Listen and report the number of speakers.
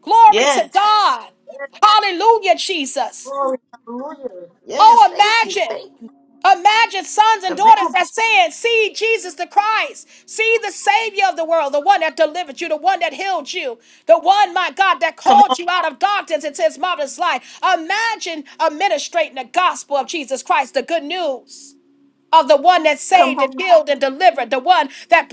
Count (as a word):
two